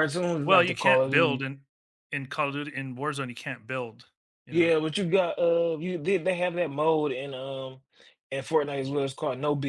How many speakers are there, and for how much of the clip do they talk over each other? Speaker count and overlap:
2, about 12%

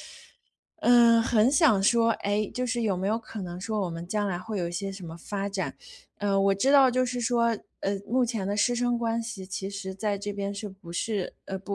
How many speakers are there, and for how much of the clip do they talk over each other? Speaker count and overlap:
1, no overlap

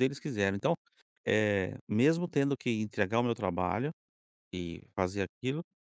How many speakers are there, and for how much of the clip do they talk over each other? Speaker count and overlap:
1, no overlap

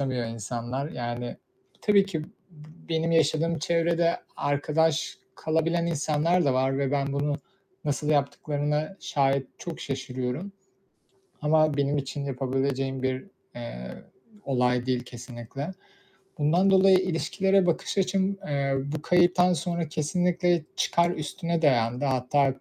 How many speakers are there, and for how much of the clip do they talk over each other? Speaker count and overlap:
1, no overlap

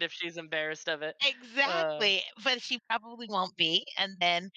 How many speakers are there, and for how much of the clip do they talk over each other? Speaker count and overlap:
2, about 9%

